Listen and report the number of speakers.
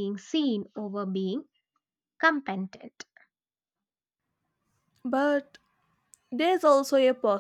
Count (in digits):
2